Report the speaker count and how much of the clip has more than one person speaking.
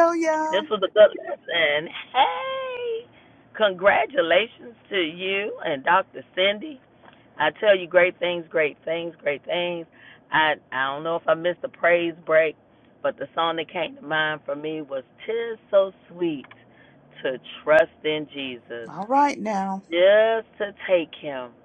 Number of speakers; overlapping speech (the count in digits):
2, no overlap